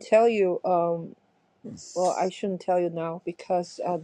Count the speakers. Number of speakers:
1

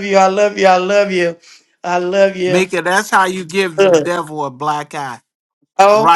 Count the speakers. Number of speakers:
2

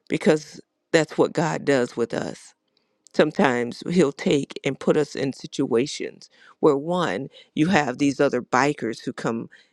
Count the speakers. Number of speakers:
1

